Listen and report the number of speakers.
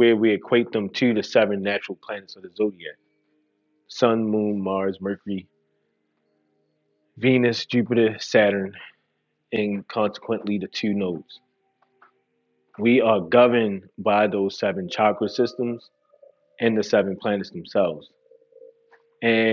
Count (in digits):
1